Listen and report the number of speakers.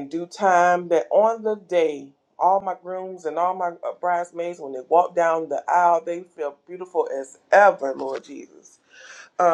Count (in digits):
1